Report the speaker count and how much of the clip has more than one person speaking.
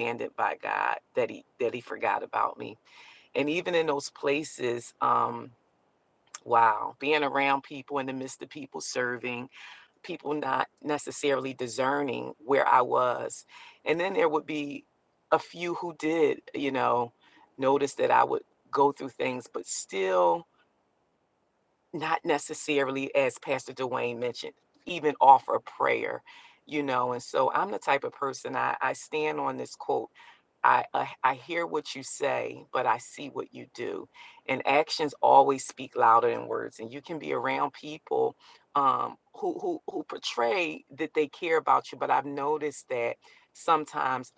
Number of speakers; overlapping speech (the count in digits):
1, no overlap